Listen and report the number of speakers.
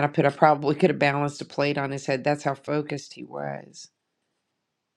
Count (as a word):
one